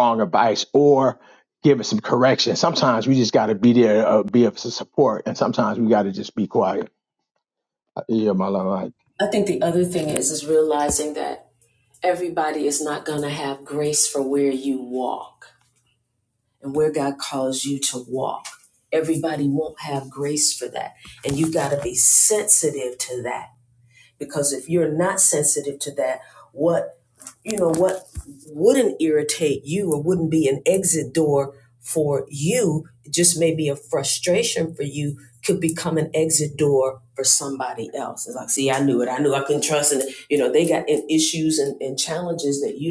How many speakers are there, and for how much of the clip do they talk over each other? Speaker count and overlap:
2, no overlap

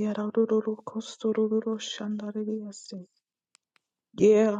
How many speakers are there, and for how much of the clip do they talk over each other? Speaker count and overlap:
1, no overlap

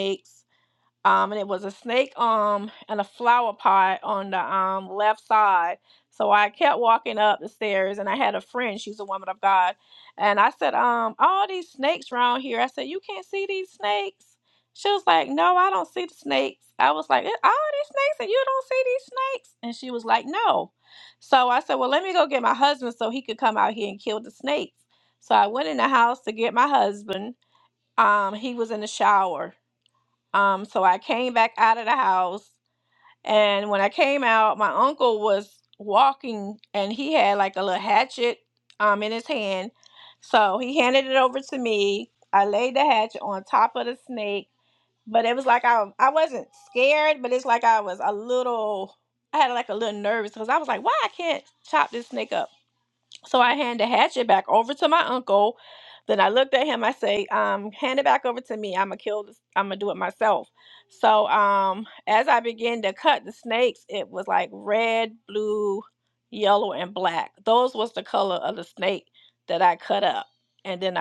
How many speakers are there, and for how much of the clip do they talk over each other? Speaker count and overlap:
1, no overlap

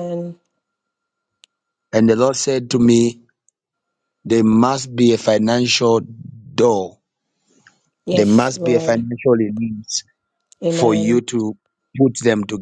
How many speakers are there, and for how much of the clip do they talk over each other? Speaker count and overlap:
2, about 11%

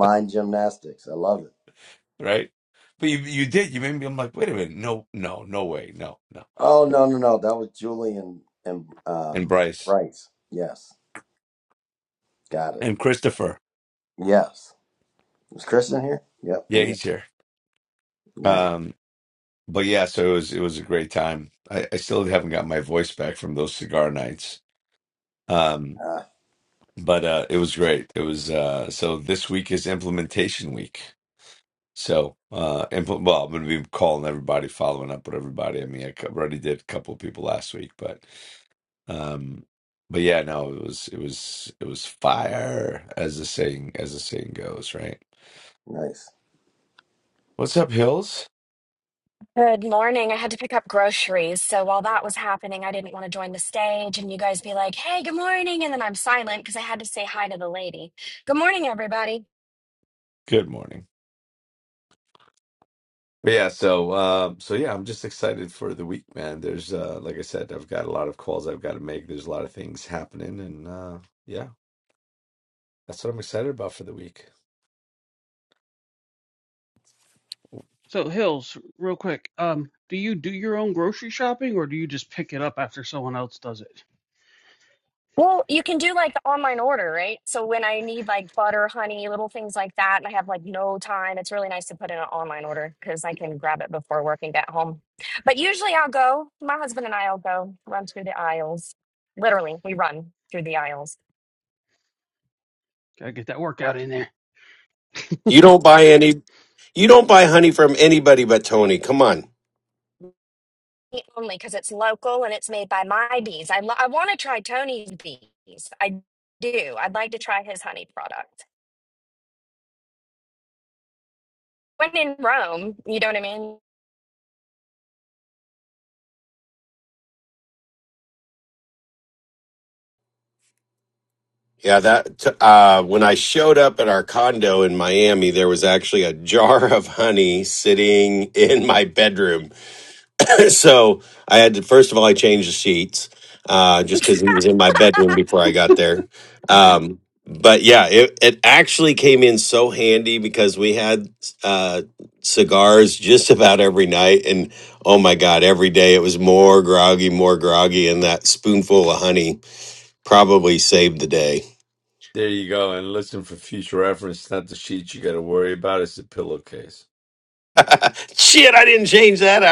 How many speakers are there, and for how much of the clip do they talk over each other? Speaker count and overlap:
5, under 1%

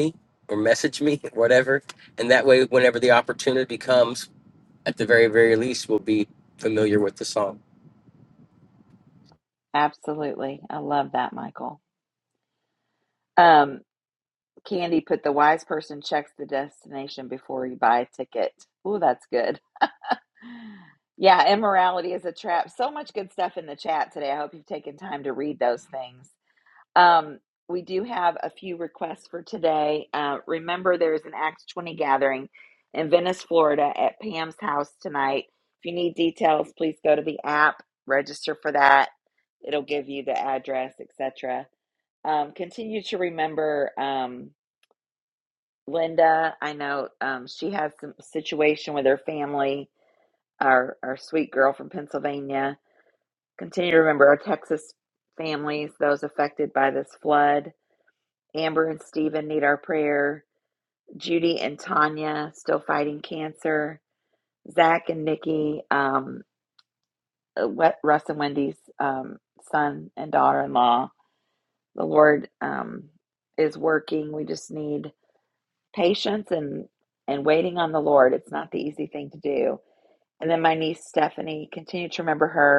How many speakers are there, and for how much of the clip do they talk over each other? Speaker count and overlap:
2, no overlap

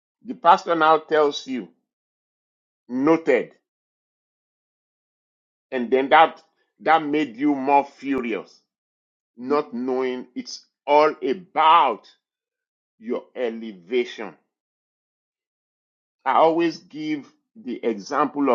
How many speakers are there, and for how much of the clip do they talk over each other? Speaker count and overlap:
1, no overlap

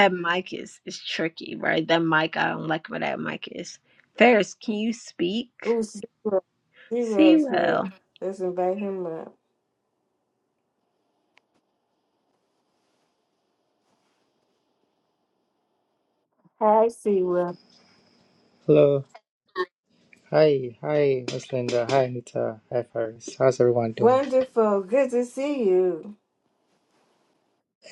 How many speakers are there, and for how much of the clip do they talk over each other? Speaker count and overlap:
3, about 4%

